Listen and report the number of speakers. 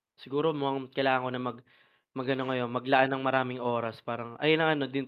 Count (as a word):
one